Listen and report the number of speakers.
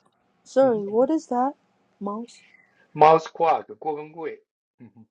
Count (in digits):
2